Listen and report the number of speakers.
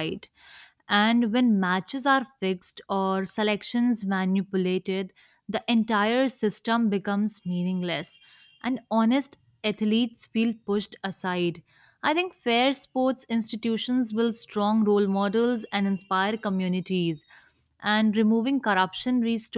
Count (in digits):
1